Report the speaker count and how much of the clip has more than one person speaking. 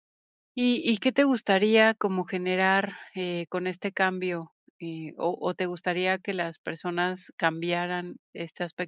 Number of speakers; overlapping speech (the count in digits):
1, no overlap